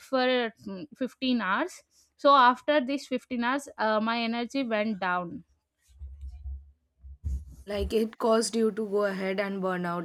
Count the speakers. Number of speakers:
two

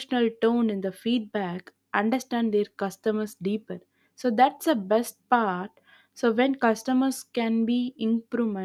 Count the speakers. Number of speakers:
one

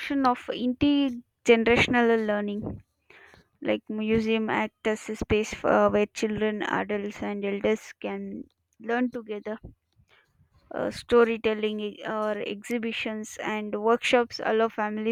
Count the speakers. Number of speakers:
one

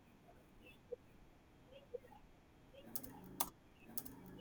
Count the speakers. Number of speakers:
zero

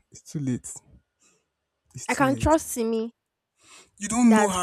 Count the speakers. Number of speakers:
two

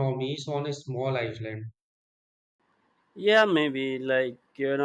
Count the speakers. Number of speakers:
two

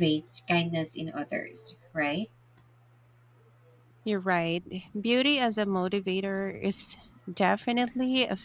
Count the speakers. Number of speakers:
two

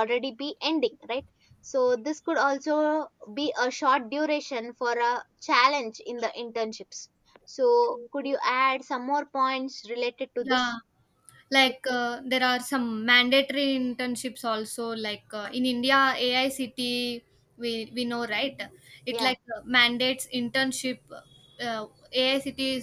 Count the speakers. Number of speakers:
two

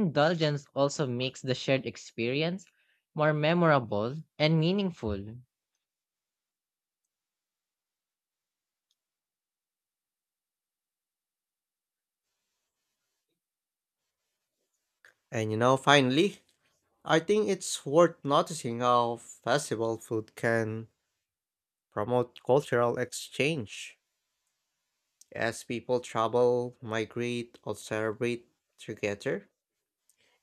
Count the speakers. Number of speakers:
two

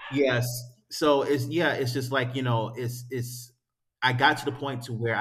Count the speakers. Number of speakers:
one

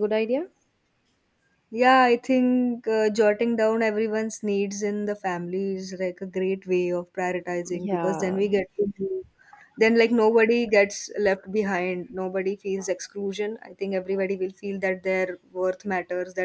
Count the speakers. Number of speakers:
two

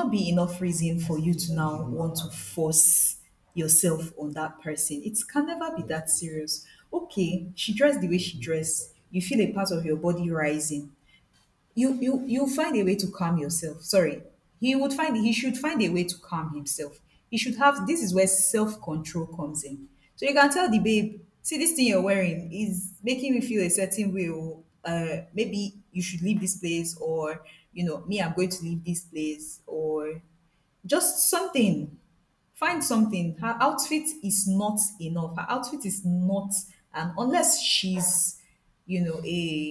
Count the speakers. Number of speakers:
one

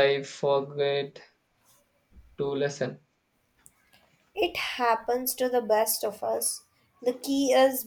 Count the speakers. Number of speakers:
two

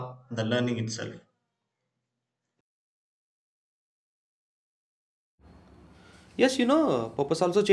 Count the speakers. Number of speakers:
two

